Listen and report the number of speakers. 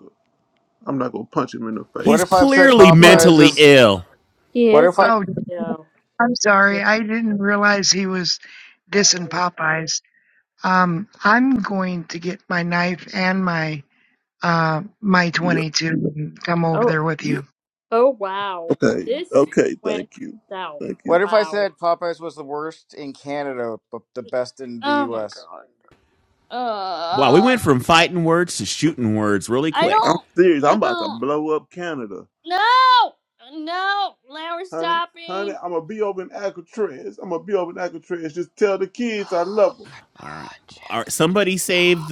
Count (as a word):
five